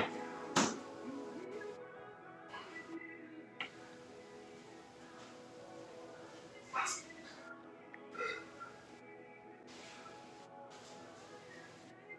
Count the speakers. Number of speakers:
0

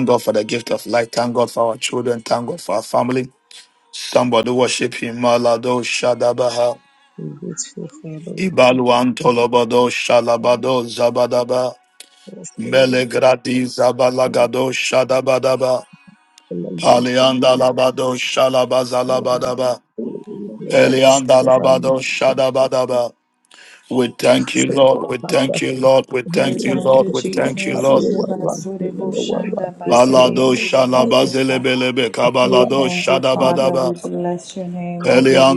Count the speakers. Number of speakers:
3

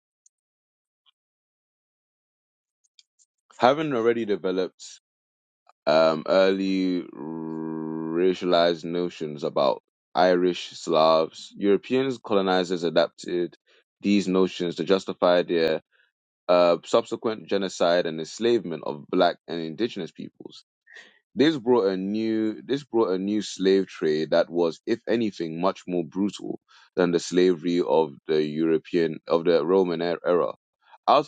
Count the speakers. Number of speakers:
1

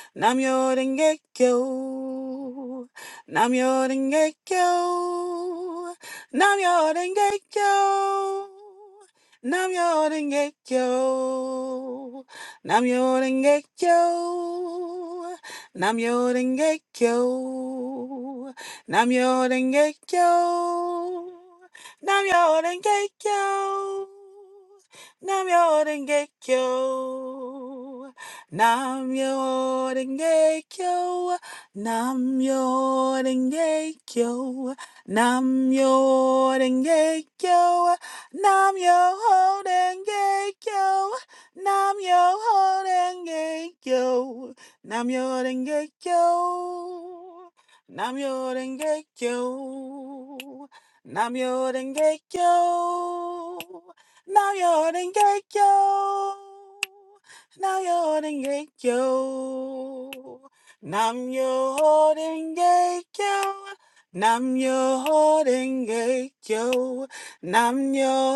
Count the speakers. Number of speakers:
1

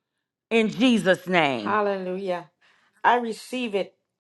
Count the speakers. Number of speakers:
2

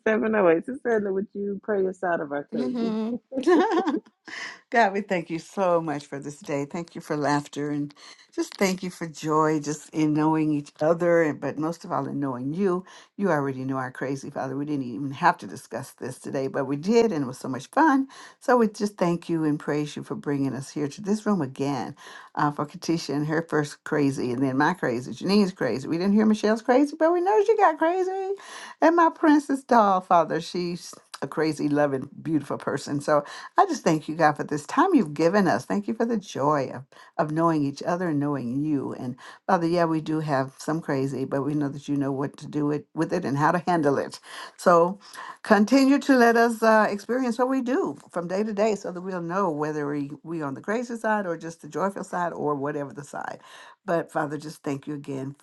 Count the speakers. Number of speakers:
2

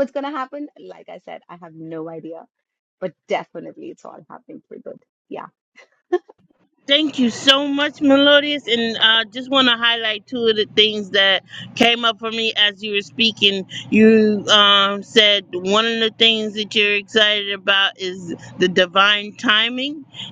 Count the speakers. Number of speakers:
2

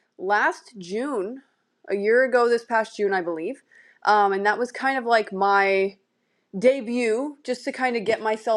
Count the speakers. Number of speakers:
1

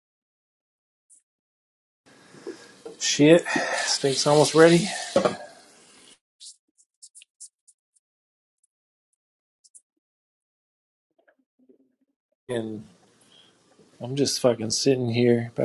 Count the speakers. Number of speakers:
1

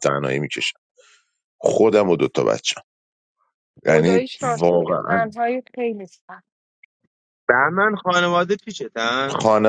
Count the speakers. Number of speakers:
3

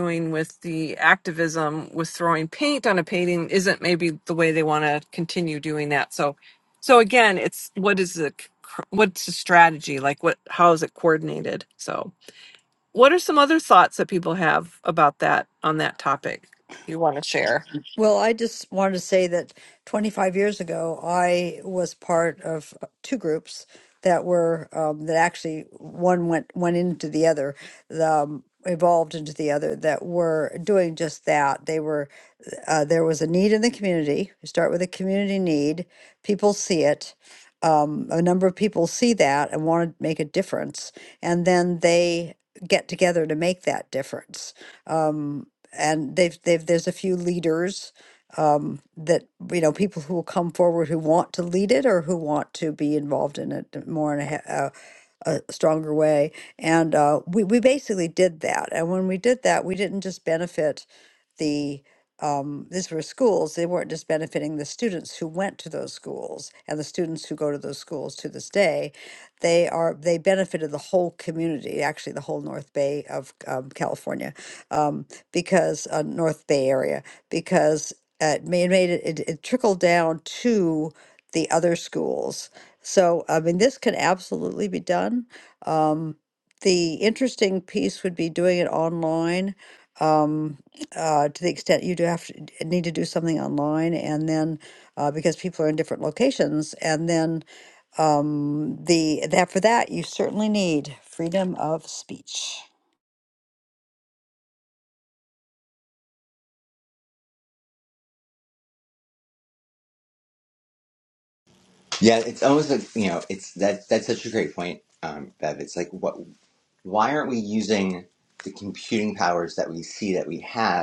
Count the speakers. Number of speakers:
3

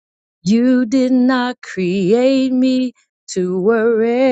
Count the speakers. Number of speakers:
1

